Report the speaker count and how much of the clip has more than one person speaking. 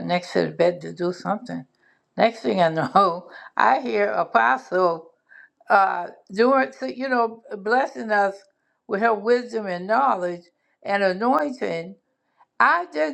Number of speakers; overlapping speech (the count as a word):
one, no overlap